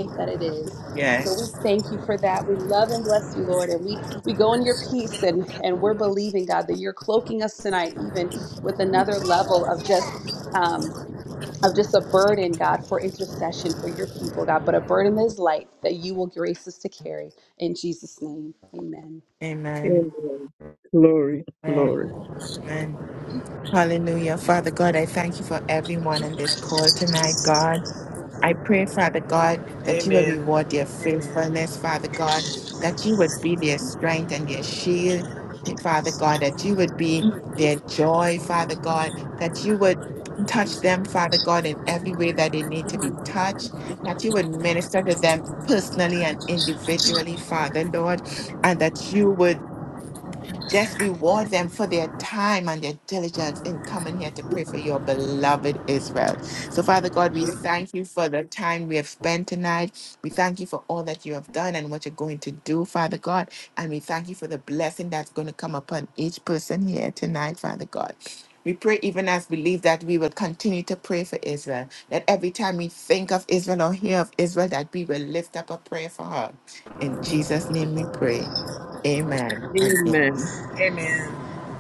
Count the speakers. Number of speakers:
four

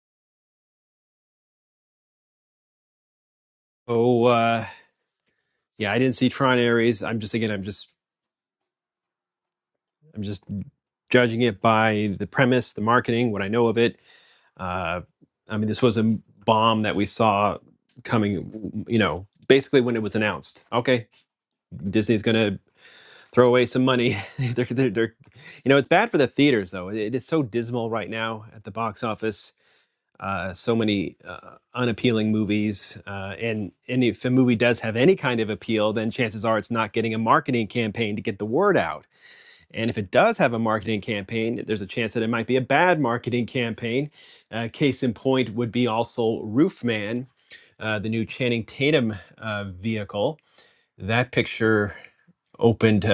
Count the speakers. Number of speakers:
one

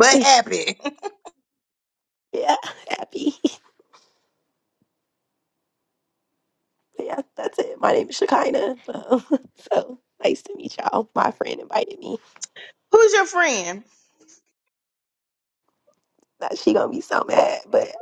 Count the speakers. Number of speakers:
two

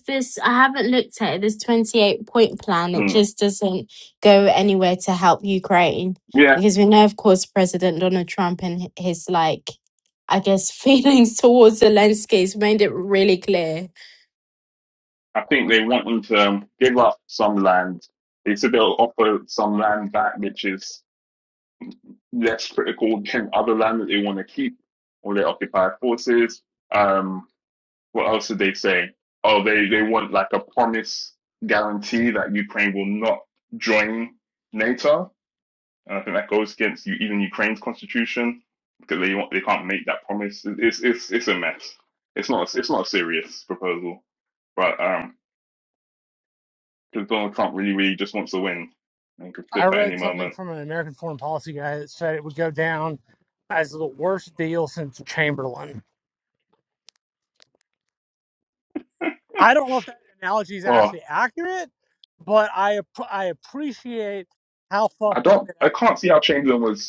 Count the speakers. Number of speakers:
three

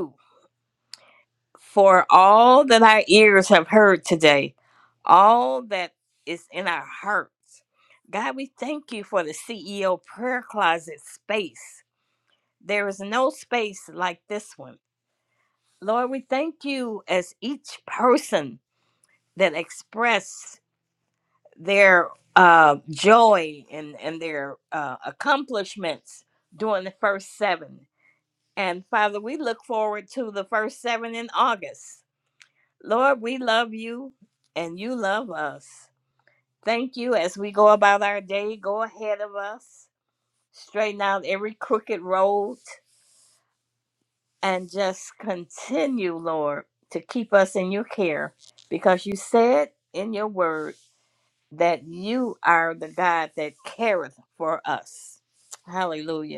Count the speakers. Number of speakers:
one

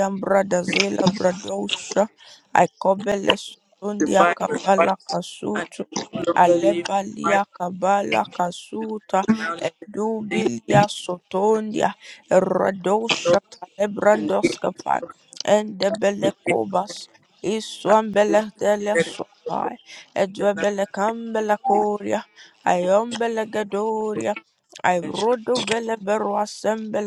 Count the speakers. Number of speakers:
two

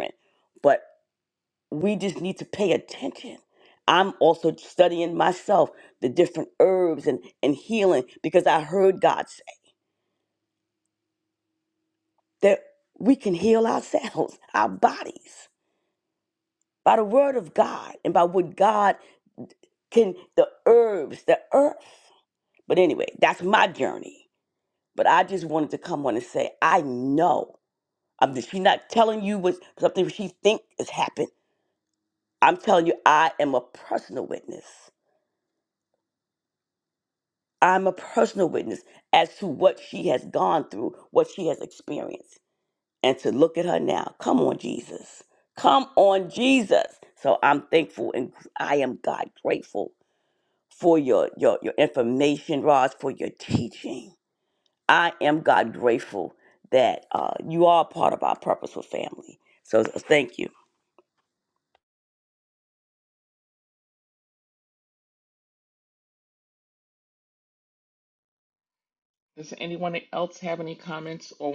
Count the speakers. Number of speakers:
two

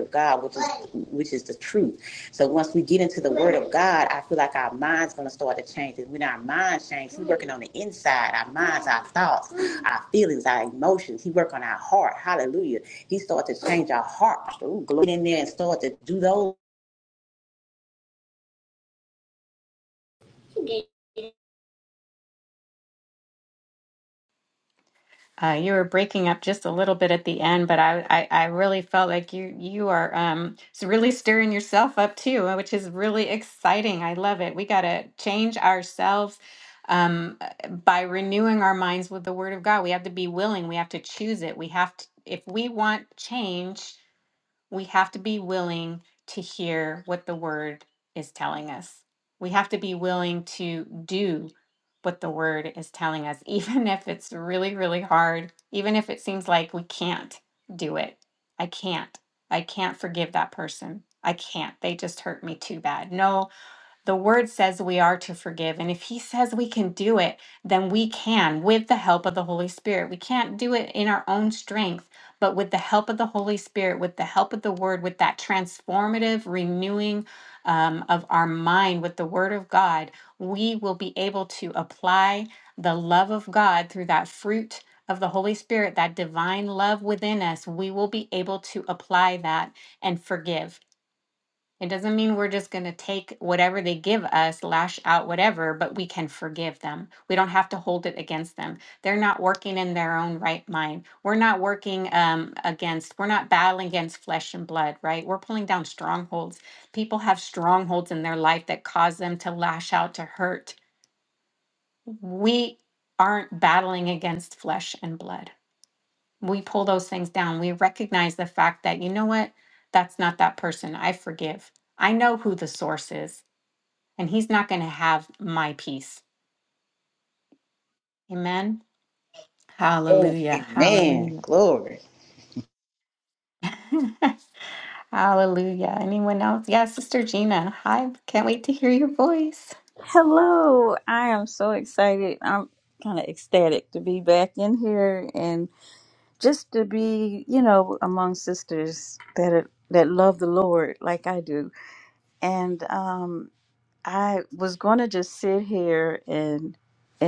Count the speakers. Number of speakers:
three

